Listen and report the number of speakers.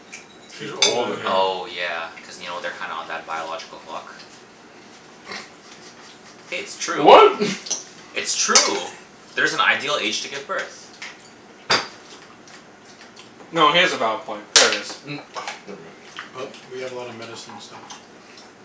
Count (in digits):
4